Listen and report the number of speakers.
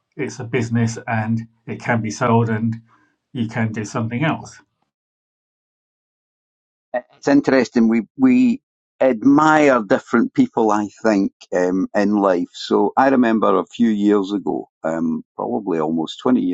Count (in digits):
2